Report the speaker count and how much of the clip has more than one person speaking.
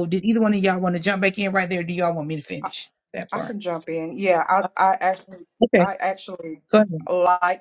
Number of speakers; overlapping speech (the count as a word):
two, about 4%